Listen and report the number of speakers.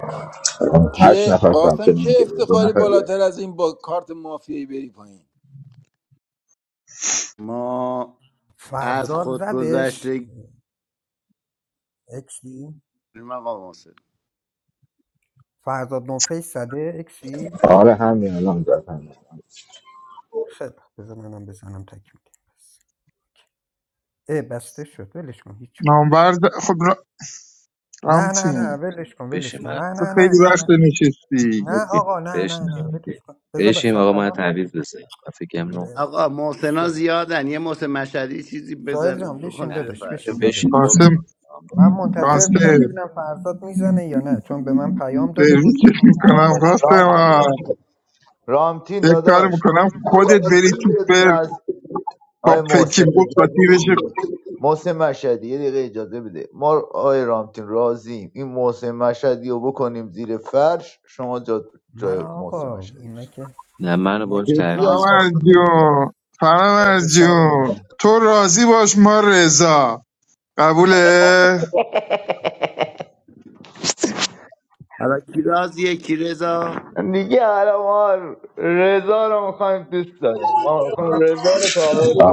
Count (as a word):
seven